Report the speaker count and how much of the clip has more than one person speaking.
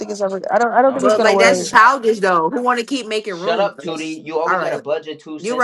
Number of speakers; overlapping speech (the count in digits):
3, about 50%